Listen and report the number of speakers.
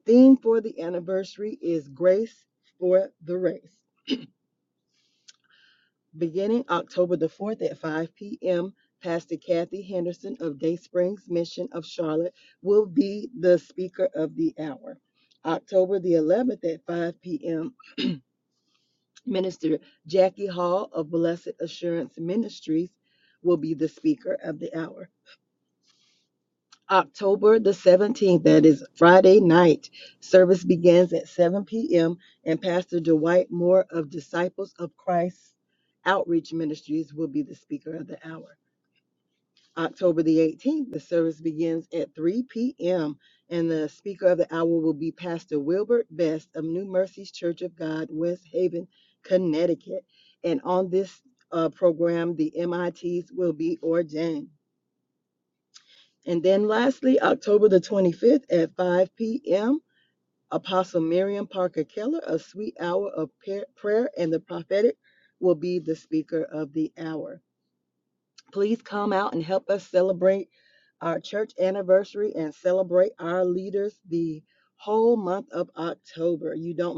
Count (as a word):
one